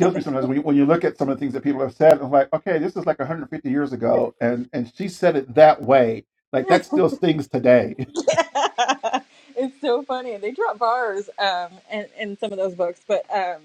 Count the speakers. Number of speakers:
2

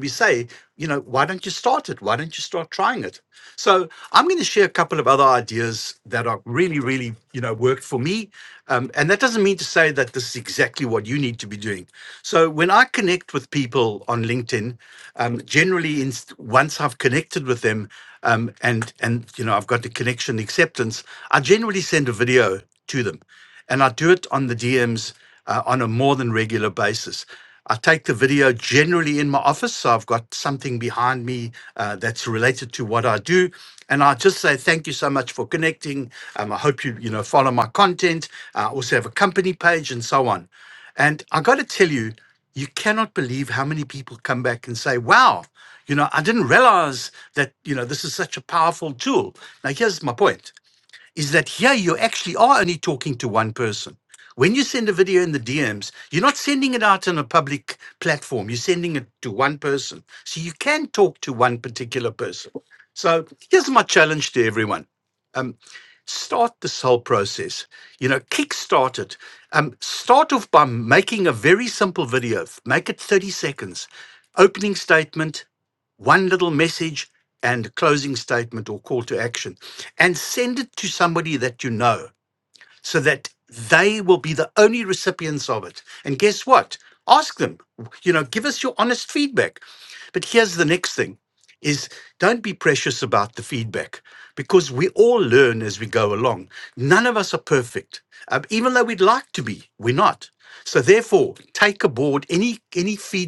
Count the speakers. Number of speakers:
1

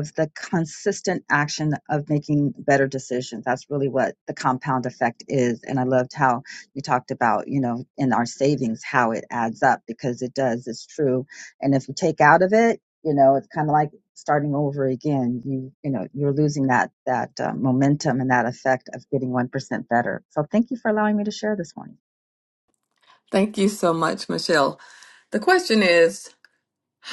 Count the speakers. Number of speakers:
2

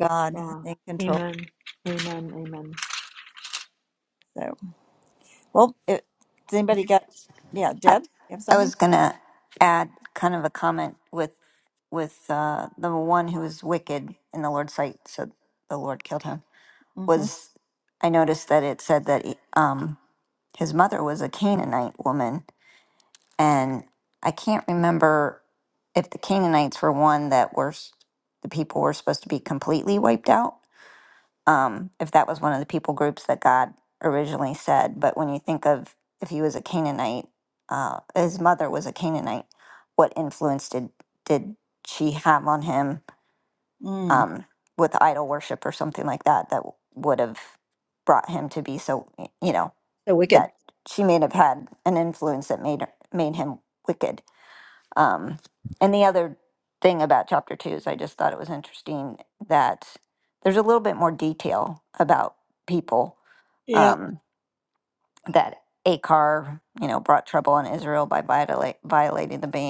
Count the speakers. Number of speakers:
3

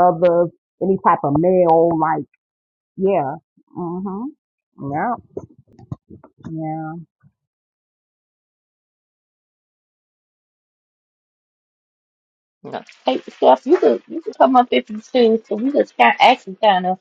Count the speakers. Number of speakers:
2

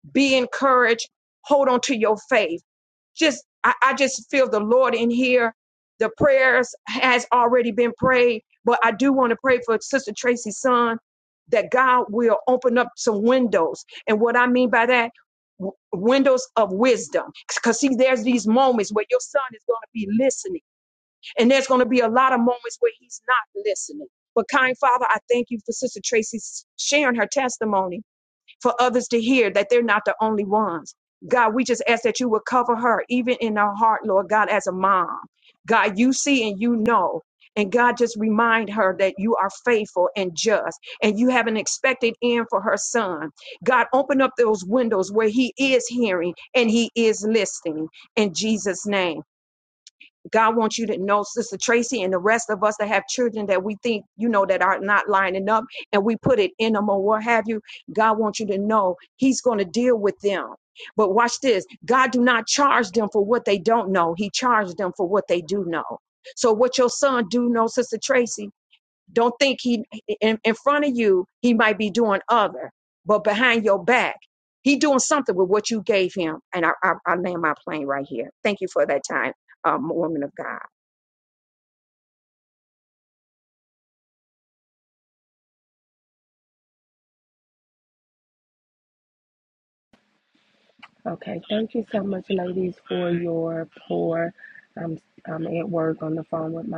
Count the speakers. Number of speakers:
2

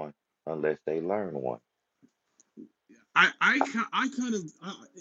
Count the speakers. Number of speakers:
2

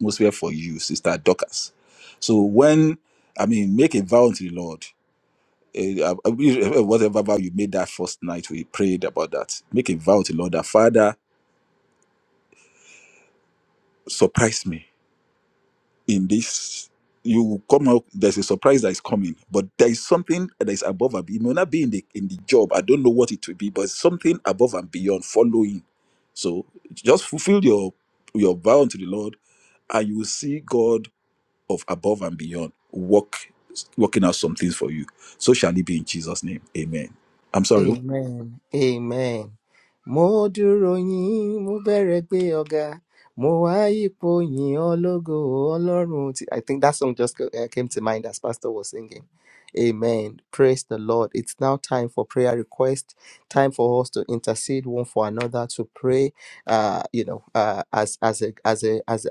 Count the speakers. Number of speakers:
2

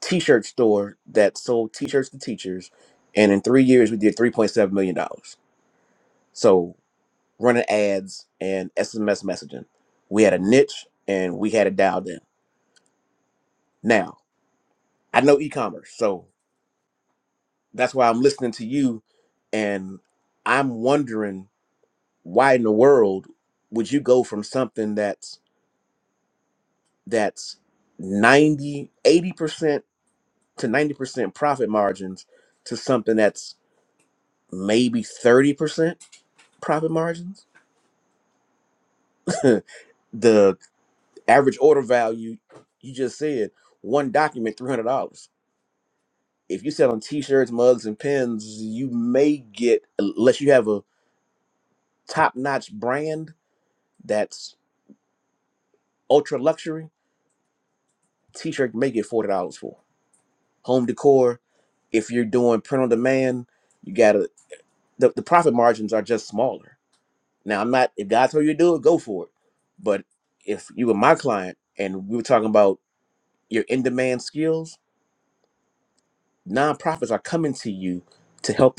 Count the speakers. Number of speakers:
1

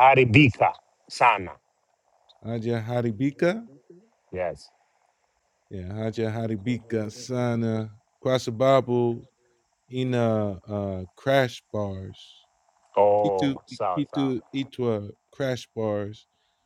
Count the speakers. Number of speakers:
2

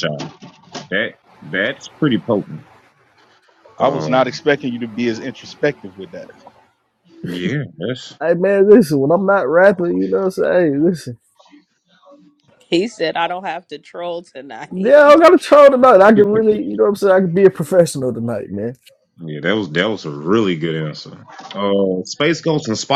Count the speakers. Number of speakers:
4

